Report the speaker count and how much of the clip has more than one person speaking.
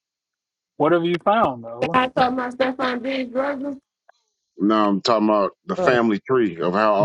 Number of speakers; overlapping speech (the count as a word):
three, about 6%